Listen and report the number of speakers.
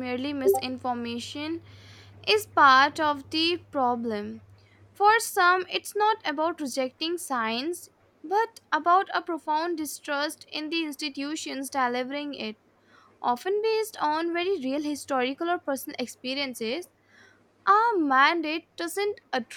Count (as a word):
one